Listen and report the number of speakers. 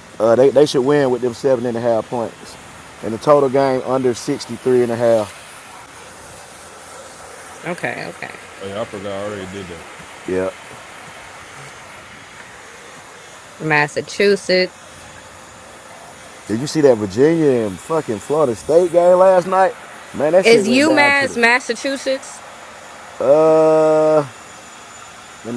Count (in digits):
3